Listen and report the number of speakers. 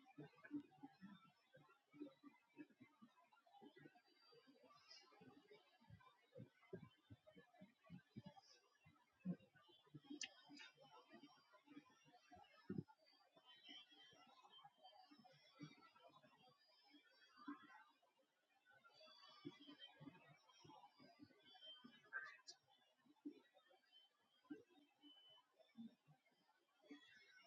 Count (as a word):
zero